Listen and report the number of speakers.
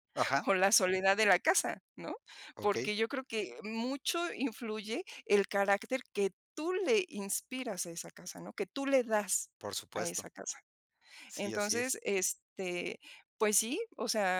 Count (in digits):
2